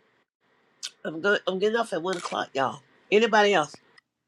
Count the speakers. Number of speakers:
one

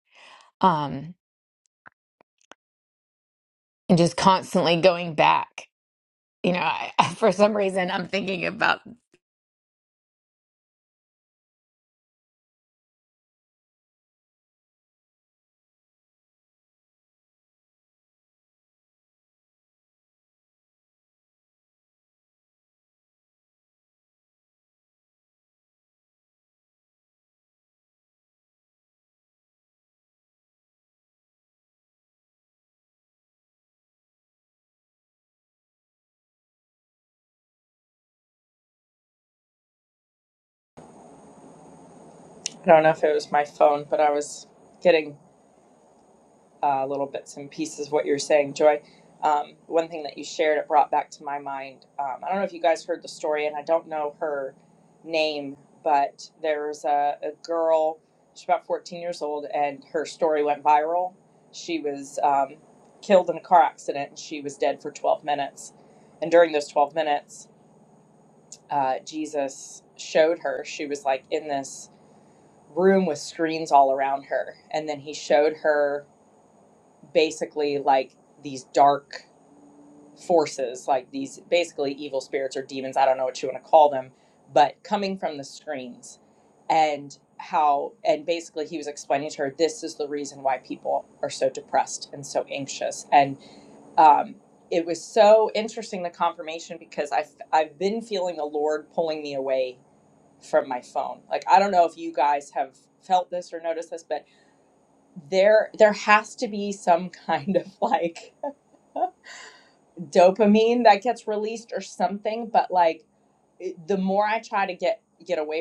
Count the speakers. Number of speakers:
two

